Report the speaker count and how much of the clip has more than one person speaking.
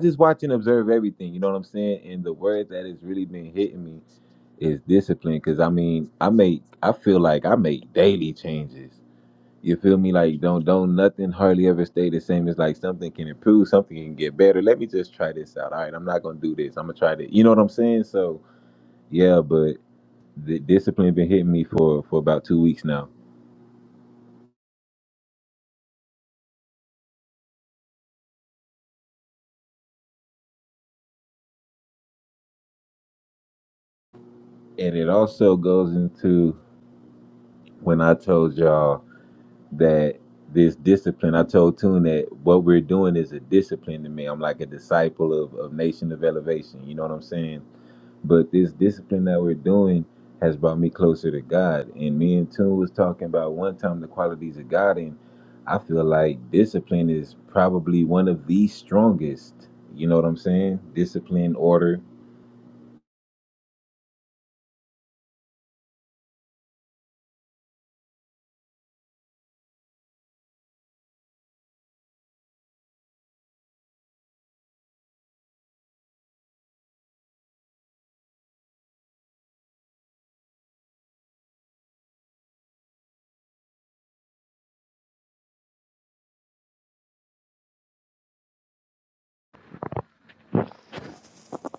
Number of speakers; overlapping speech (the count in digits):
1, no overlap